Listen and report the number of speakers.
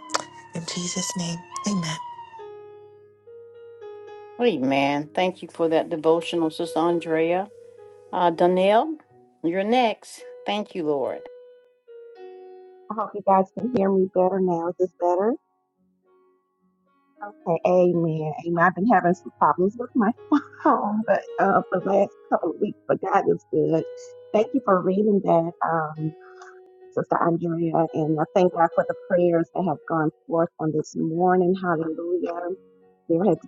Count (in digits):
3